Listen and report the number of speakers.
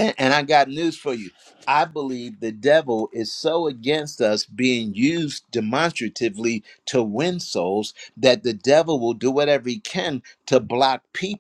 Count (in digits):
1